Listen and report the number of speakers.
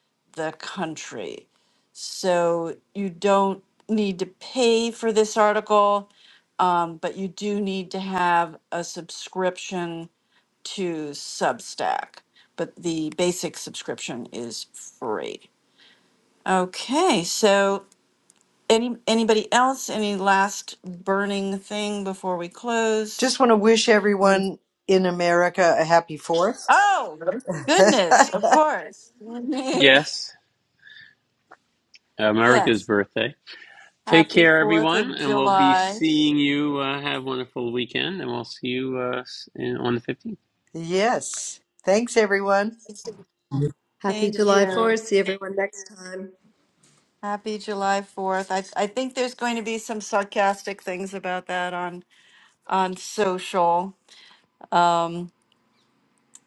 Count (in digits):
4